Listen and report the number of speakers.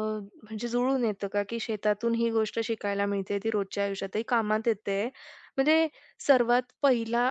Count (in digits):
1